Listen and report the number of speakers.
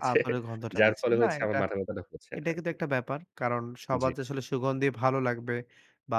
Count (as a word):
two